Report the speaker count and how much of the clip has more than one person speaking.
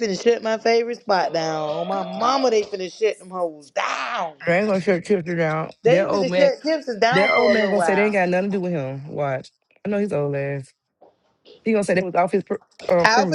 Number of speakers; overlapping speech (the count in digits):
2, about 16%